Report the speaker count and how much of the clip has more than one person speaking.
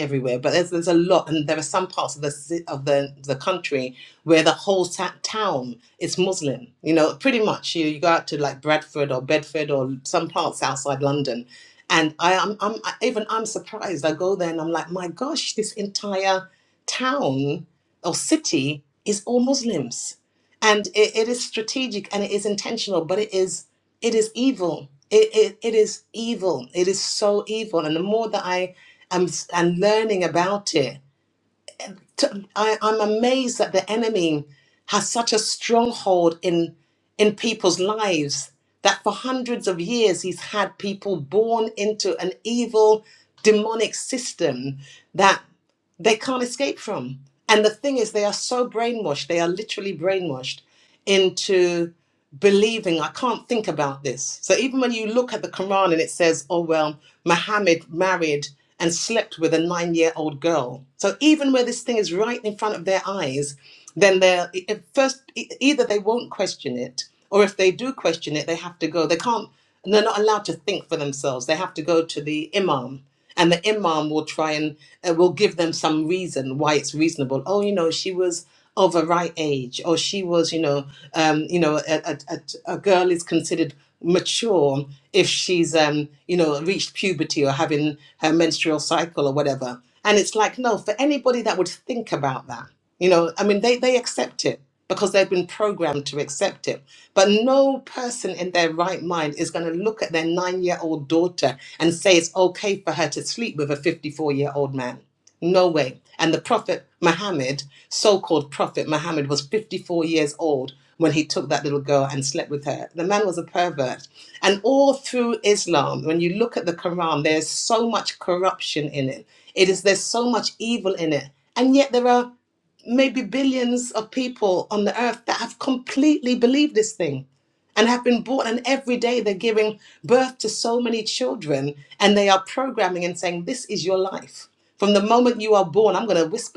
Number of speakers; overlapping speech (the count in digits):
1, no overlap